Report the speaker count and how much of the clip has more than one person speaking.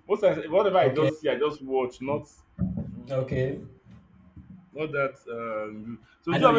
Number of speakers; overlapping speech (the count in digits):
2, about 9%